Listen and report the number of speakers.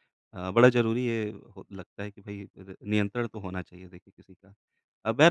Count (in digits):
1